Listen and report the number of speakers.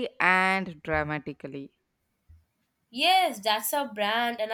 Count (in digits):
2